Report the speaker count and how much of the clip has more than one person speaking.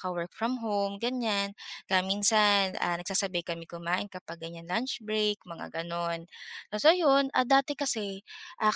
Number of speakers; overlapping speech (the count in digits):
1, no overlap